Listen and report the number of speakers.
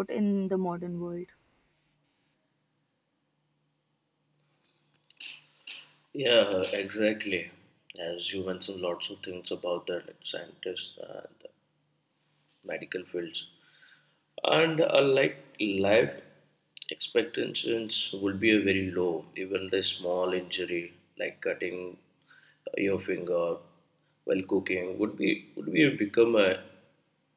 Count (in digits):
2